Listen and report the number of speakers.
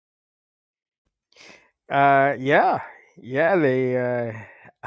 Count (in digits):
1